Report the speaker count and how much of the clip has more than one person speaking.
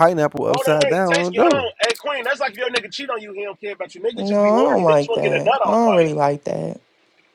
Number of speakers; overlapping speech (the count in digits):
3, about 41%